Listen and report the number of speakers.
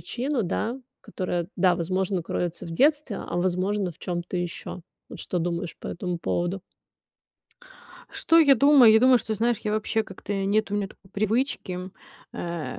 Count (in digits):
2